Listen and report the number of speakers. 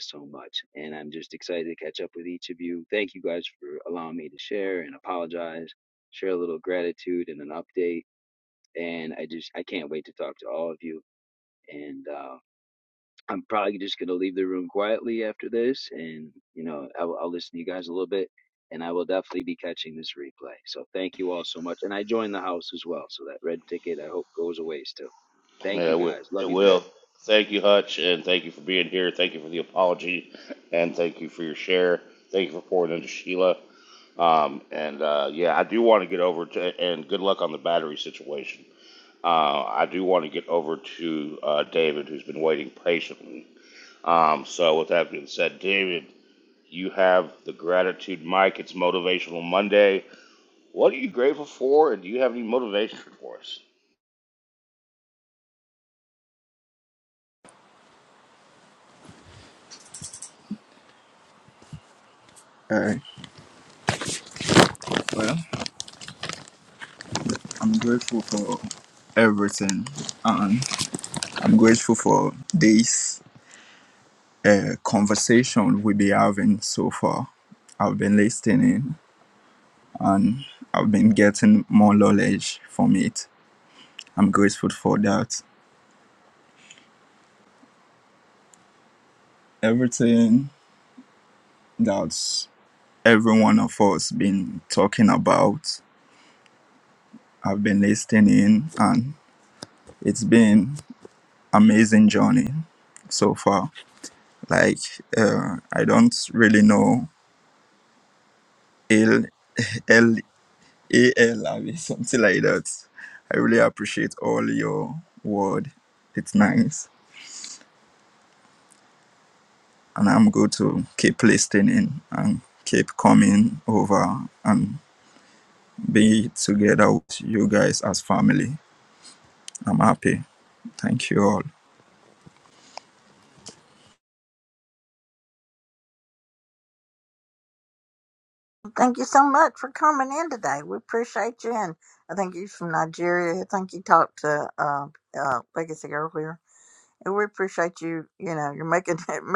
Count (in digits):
4